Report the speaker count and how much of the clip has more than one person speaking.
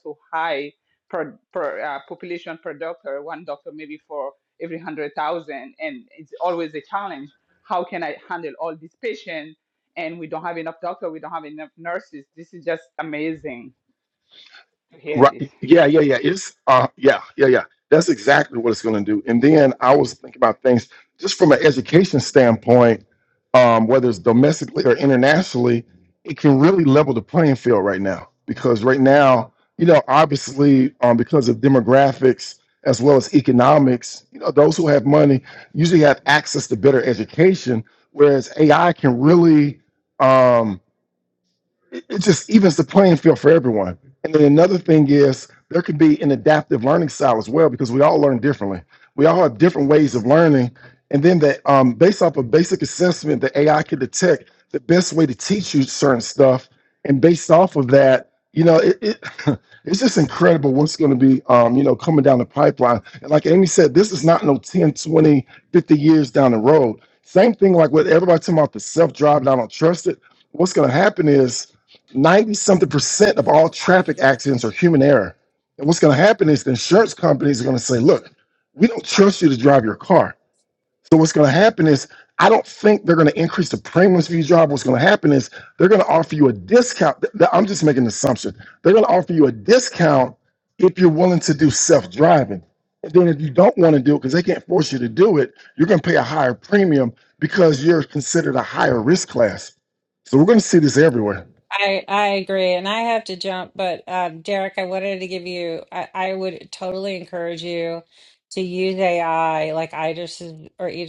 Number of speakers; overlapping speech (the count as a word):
three, under 1%